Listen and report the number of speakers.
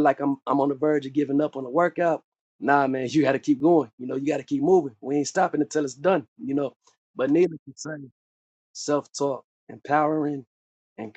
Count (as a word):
one